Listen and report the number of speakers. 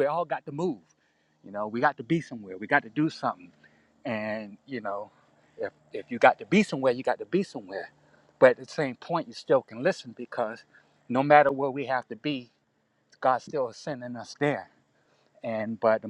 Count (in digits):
1